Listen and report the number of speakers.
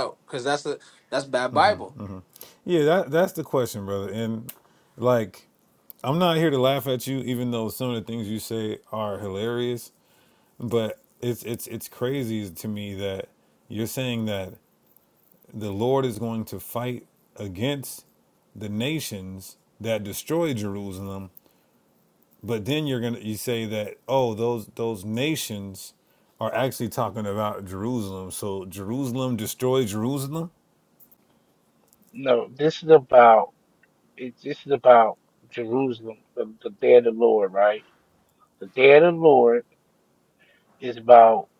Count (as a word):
three